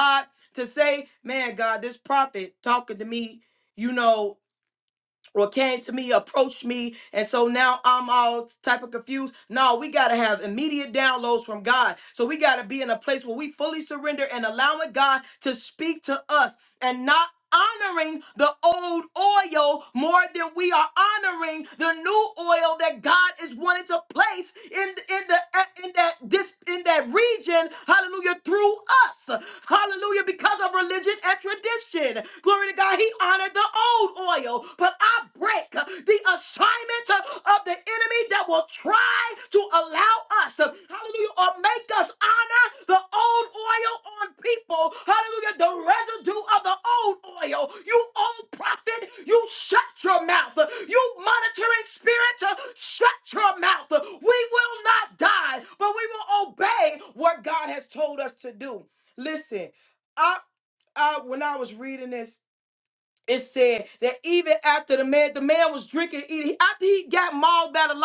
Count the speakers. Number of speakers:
one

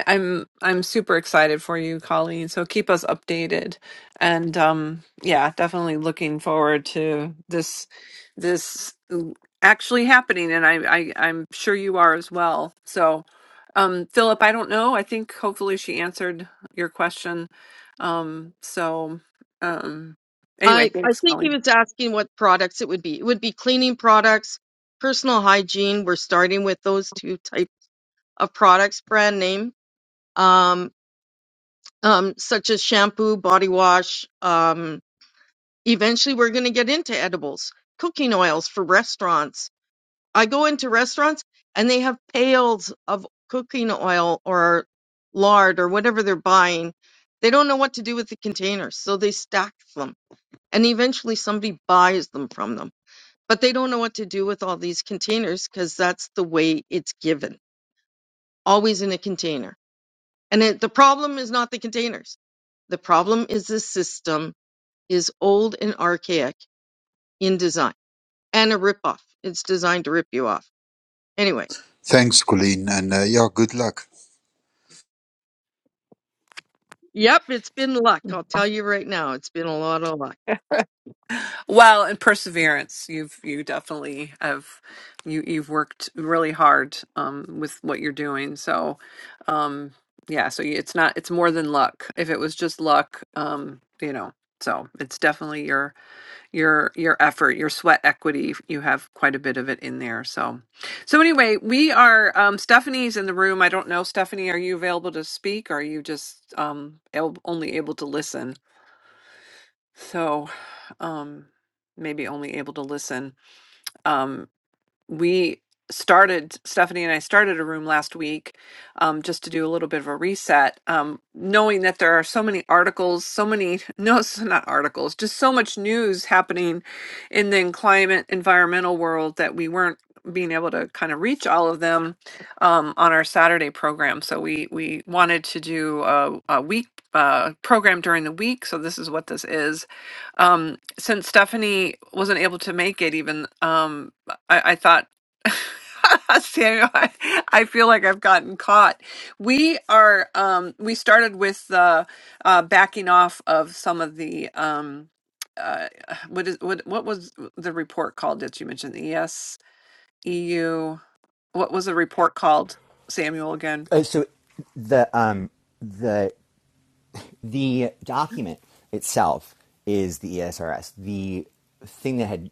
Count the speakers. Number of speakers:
four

